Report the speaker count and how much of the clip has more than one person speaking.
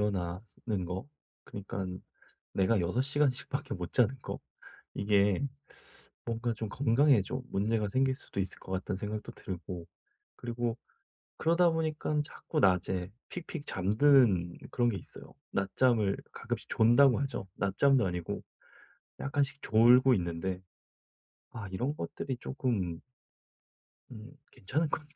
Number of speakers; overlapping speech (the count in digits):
1, no overlap